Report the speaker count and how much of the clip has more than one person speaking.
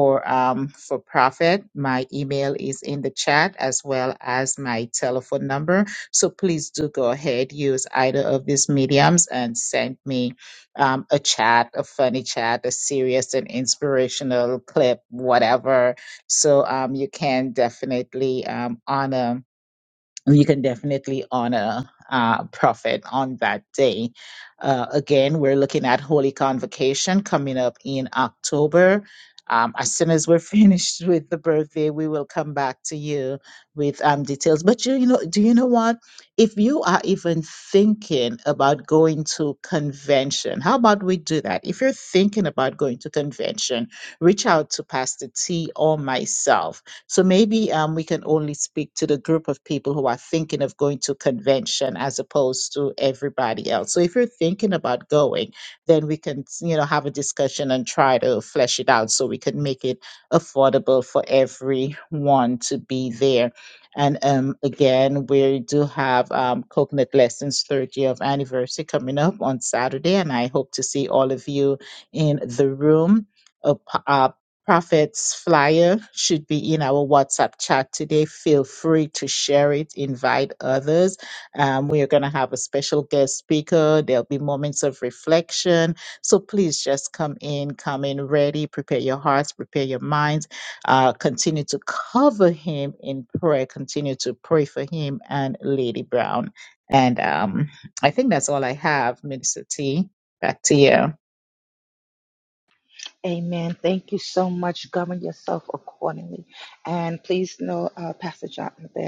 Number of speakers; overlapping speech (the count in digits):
2, no overlap